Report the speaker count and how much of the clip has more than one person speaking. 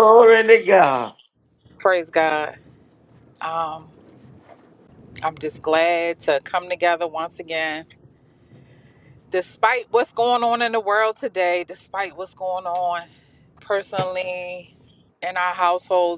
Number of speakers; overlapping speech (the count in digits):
2, about 1%